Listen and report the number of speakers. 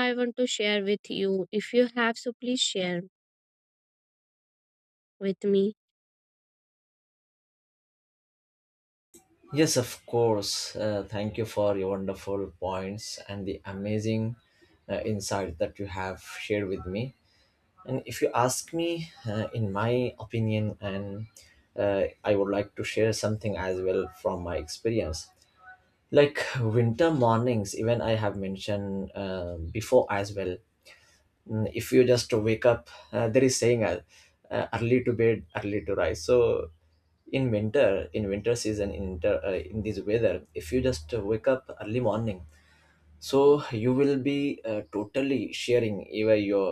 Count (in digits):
2